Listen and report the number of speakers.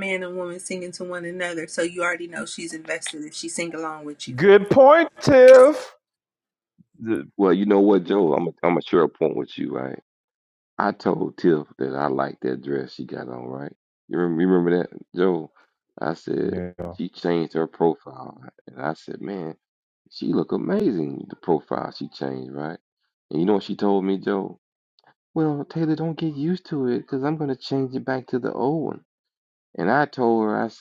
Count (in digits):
3